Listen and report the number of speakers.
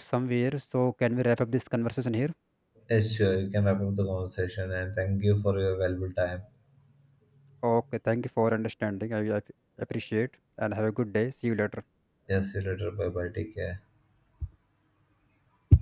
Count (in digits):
2